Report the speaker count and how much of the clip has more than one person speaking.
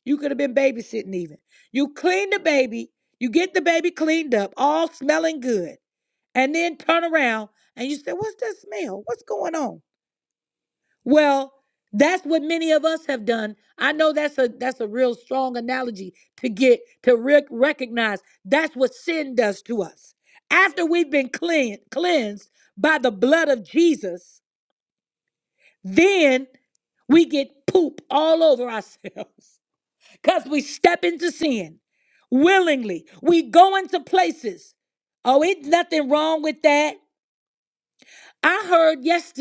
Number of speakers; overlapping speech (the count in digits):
1, no overlap